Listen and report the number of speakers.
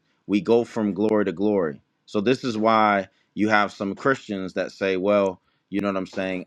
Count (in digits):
1